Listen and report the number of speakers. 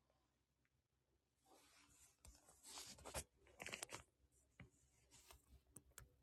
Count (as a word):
zero